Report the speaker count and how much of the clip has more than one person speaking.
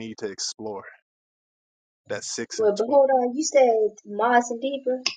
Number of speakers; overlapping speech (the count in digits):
2, about 8%